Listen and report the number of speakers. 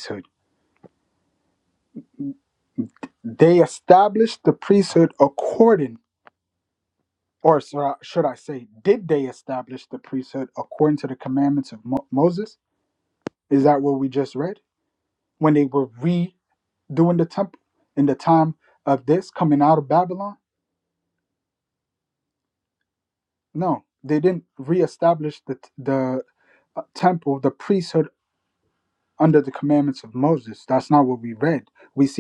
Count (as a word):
one